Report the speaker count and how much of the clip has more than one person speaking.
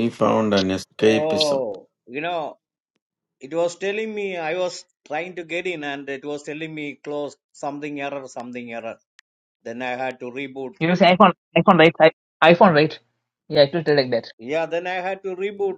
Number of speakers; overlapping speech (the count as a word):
three, about 4%